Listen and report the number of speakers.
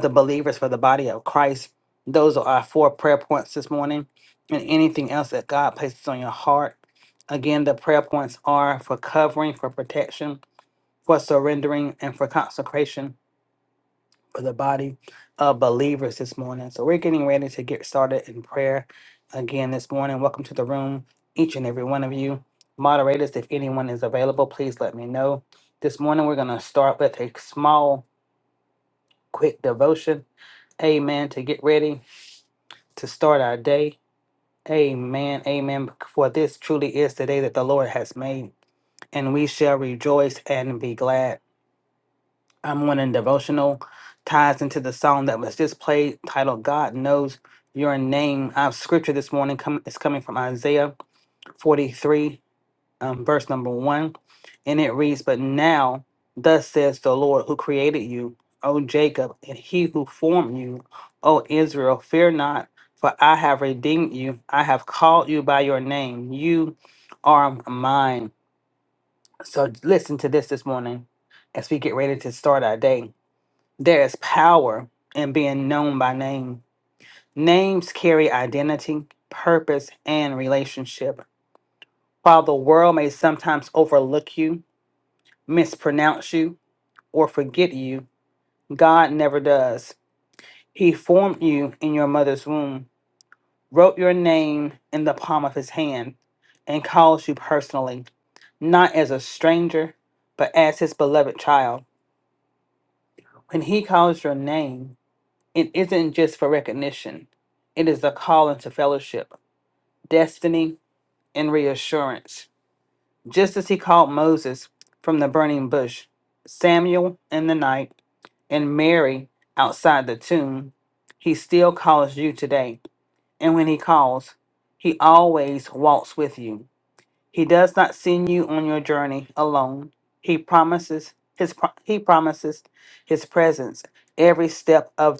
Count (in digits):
1